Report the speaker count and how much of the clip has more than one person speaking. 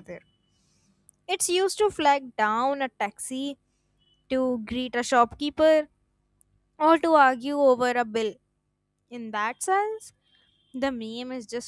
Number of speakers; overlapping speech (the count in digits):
1, no overlap